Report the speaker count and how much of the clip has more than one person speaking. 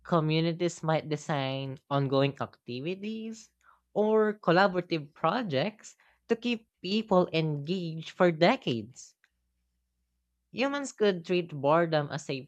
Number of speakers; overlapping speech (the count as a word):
one, no overlap